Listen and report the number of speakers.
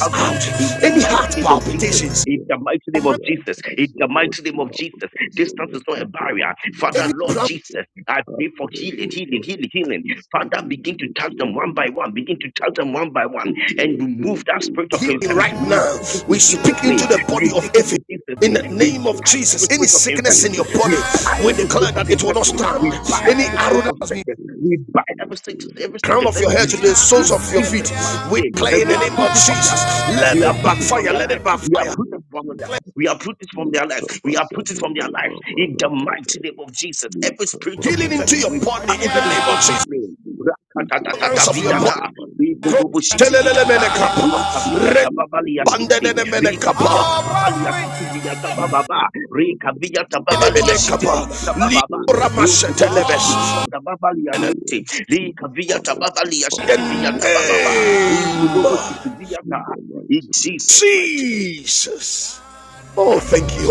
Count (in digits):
3